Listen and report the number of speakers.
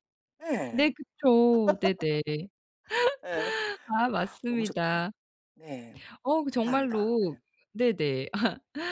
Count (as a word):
two